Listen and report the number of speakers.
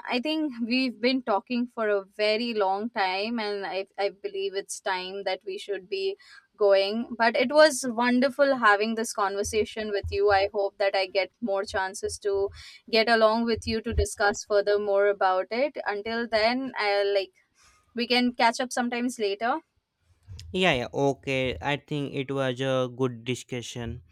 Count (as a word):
two